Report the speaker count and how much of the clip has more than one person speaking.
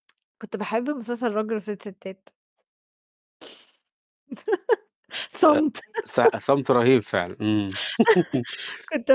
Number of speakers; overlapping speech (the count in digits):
2, about 2%